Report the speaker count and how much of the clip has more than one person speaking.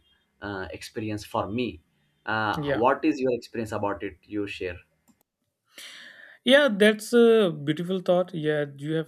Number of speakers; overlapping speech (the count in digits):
2, about 3%